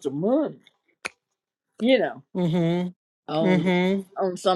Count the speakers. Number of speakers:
two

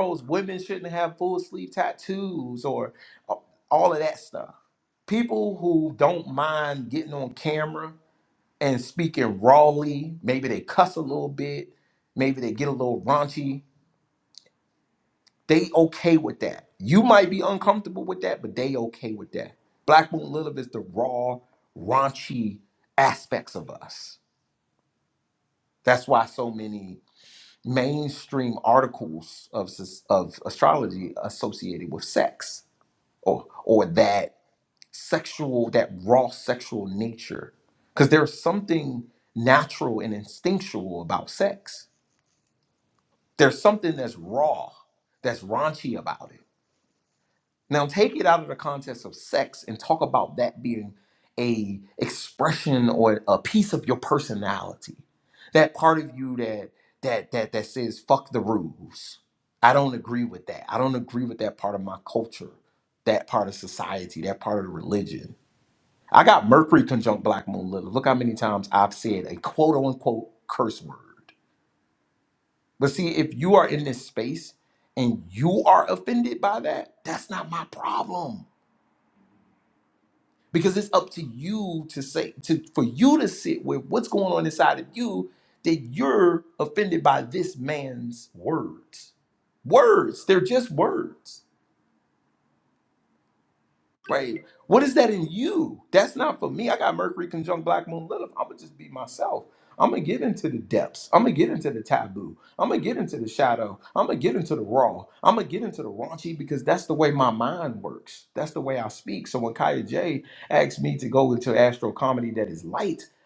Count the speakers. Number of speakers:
one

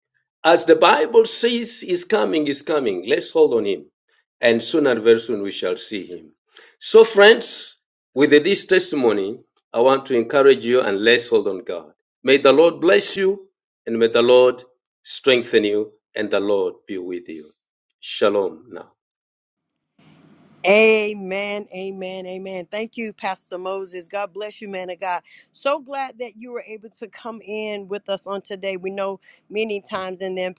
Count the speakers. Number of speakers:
two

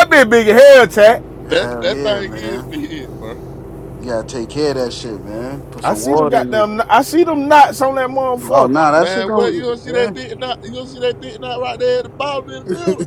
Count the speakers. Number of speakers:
three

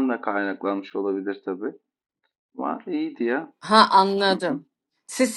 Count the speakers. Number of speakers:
two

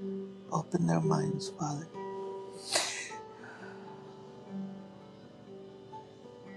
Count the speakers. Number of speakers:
one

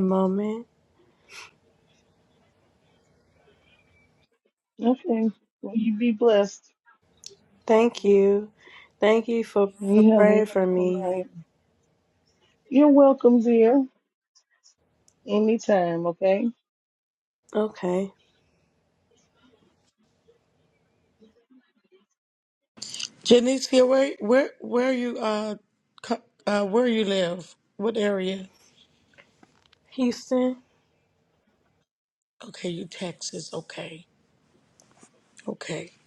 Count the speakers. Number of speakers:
three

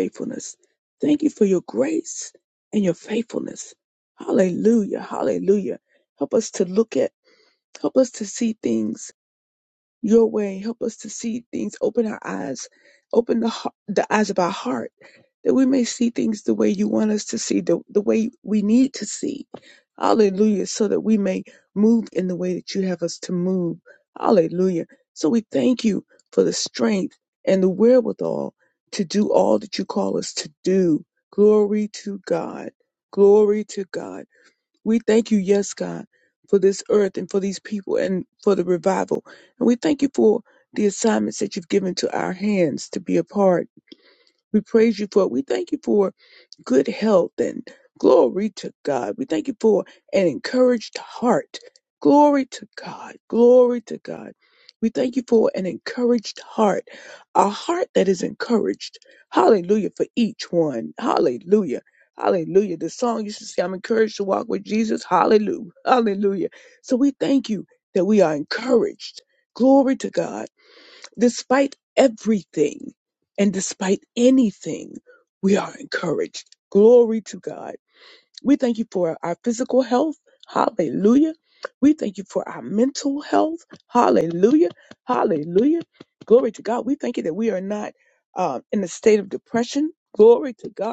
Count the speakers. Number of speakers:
one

